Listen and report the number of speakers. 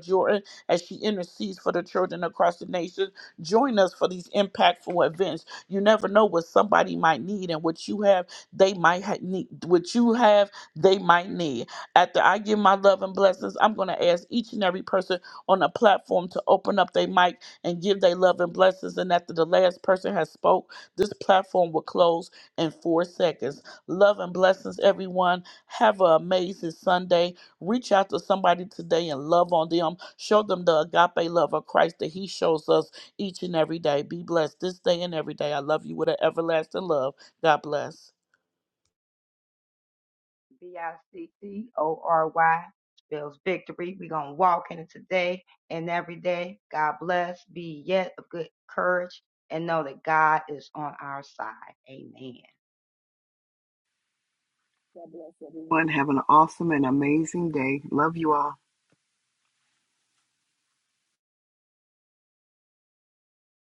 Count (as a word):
three